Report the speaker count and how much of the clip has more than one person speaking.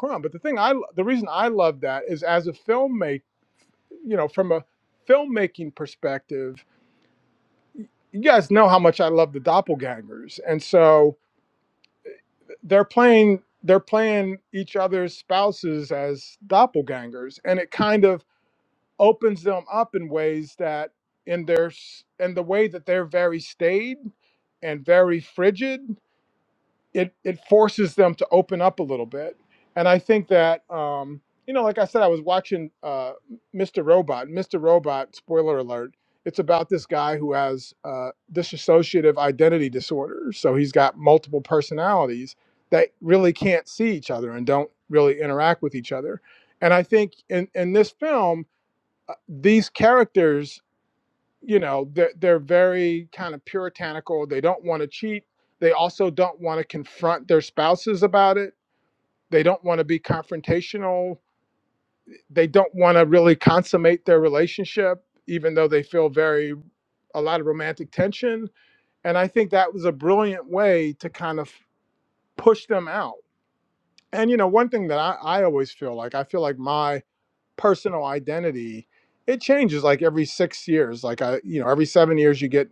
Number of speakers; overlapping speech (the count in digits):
1, no overlap